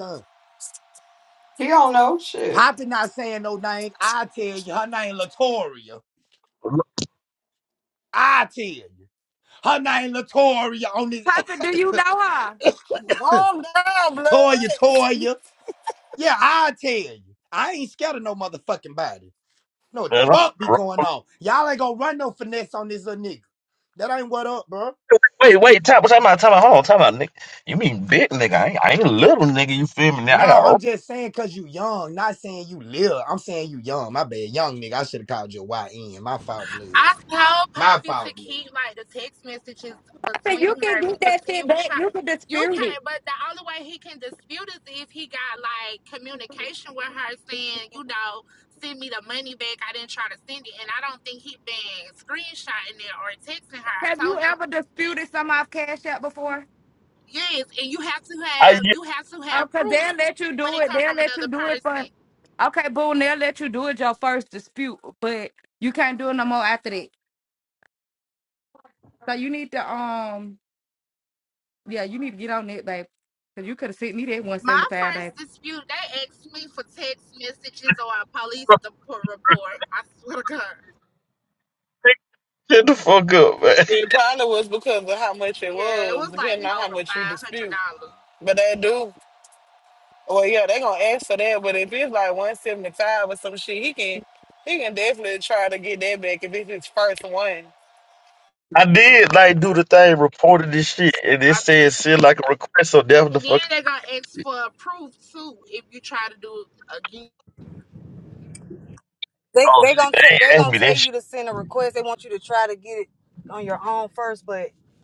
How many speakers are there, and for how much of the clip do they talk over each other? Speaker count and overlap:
seven, about 10%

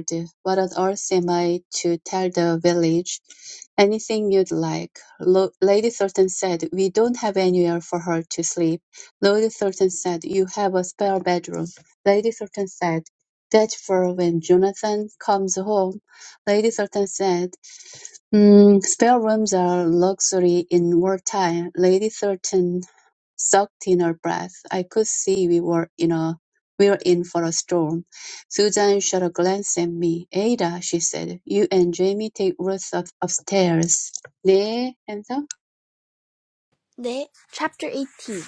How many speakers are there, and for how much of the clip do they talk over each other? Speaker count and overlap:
two, no overlap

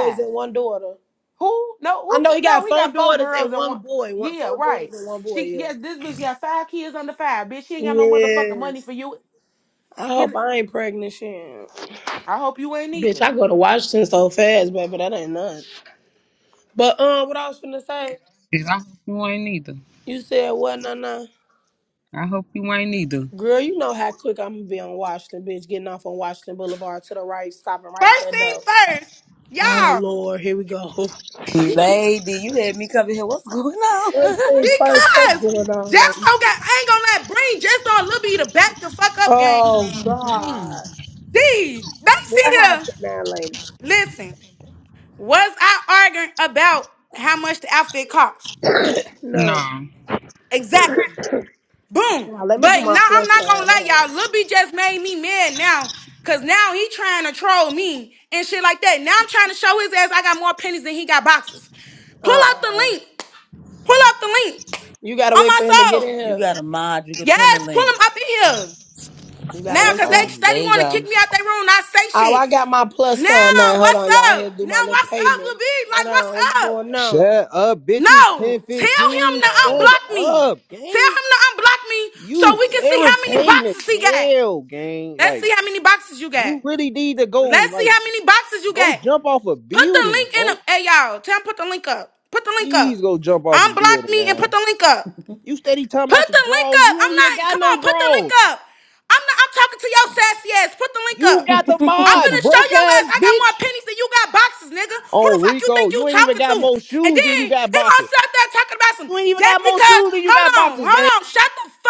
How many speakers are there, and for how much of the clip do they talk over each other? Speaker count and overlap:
six, about 30%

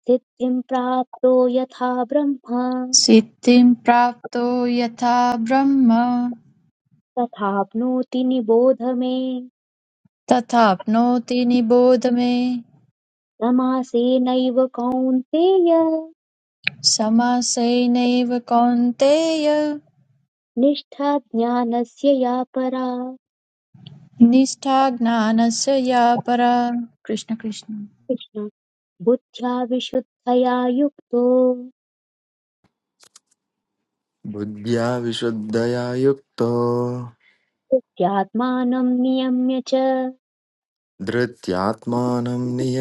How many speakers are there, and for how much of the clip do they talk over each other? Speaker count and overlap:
three, no overlap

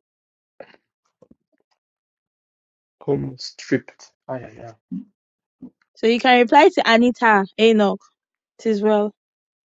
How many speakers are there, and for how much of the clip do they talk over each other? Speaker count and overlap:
two, no overlap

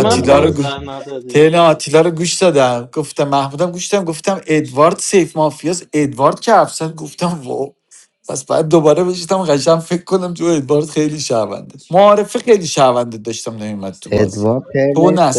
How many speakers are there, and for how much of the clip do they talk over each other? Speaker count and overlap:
three, about 12%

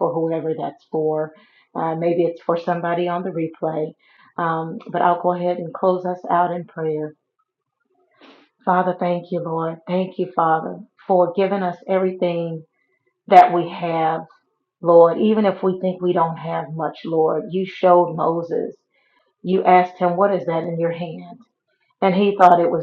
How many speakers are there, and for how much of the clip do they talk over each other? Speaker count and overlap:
one, no overlap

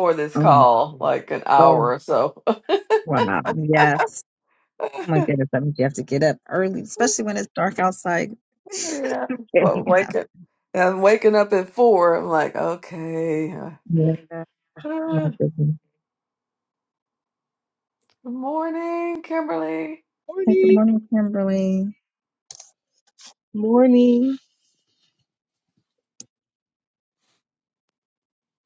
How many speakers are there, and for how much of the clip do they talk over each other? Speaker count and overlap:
three, about 6%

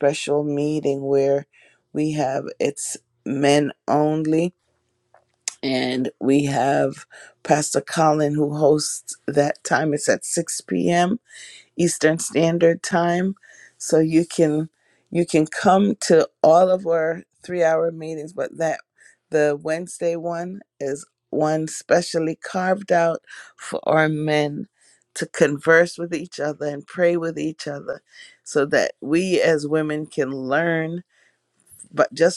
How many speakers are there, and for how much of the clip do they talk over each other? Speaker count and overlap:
one, no overlap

